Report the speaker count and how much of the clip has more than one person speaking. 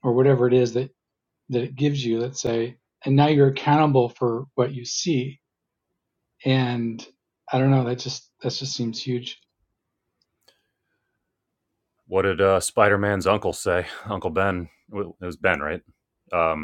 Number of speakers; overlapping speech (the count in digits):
2, no overlap